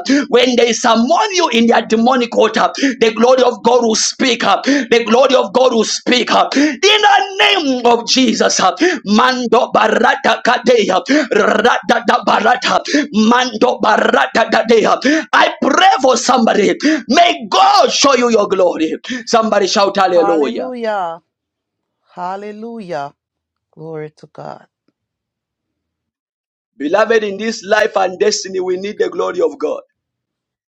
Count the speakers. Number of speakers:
two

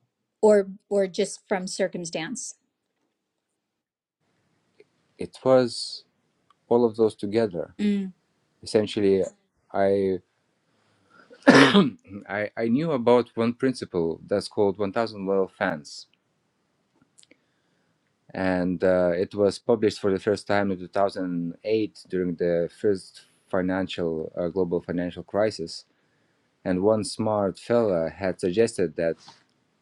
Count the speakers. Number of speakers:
two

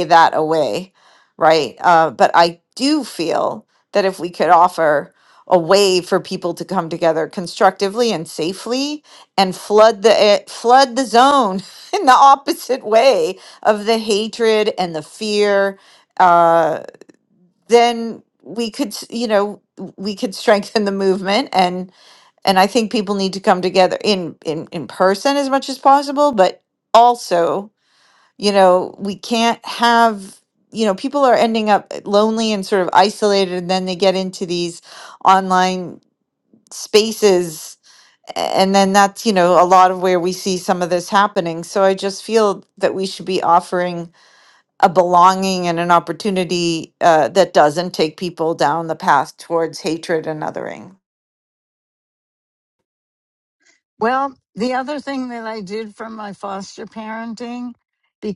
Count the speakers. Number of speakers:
two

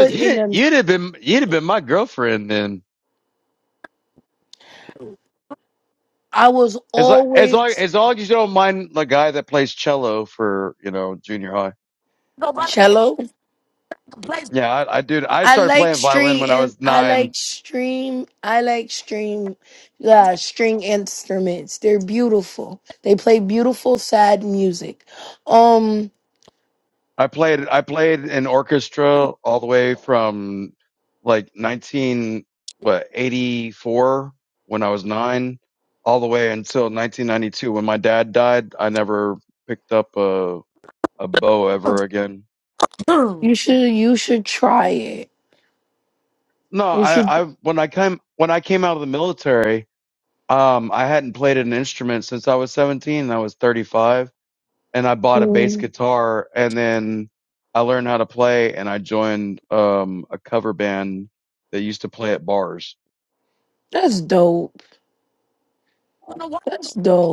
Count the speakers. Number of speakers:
three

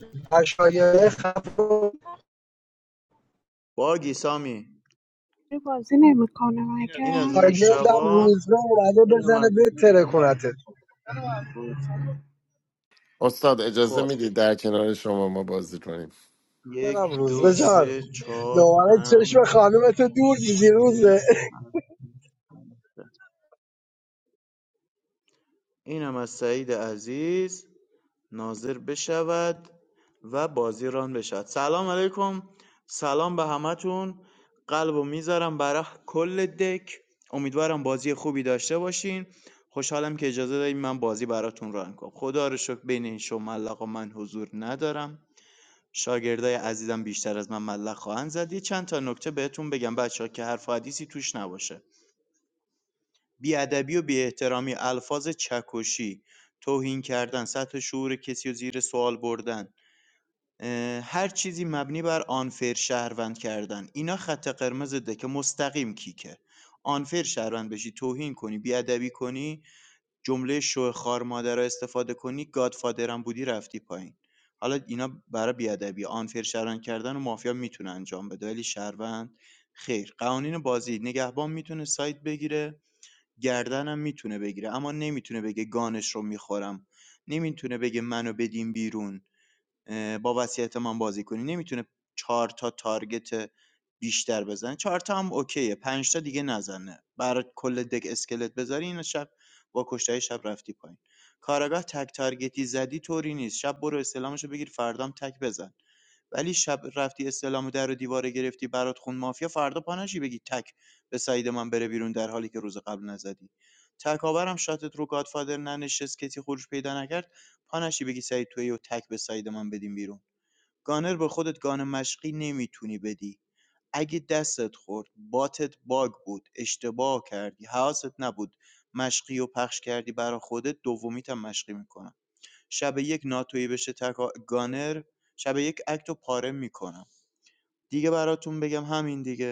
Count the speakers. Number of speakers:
four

